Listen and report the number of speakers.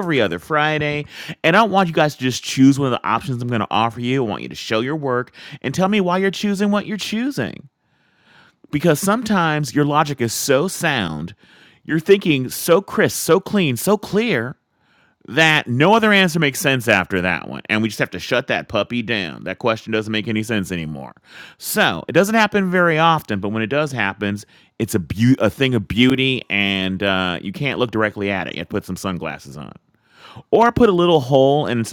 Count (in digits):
1